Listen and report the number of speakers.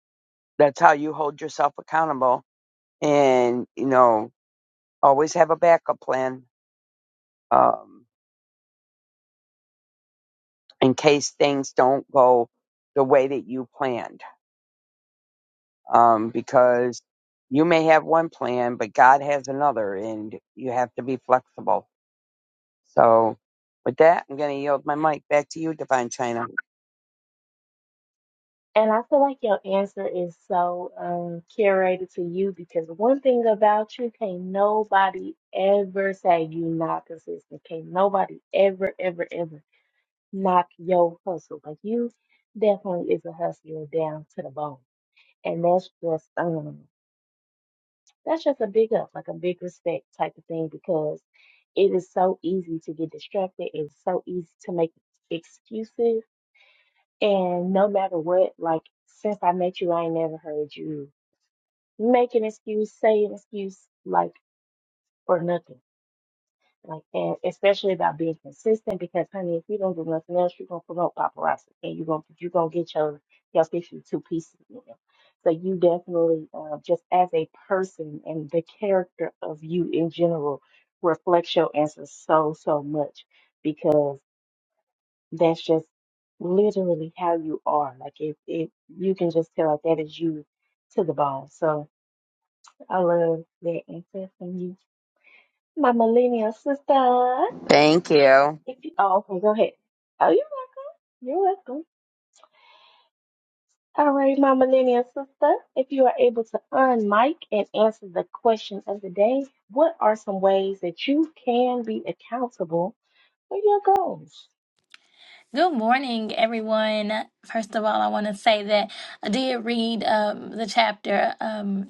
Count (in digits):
3